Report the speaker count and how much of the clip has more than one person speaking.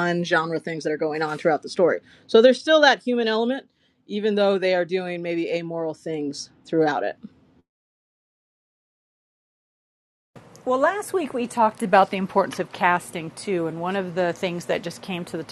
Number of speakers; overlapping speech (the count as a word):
two, no overlap